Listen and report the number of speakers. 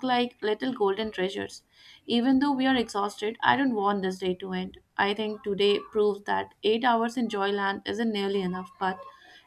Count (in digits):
1